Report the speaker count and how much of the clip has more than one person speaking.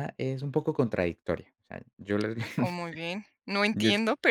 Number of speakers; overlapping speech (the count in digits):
2, about 5%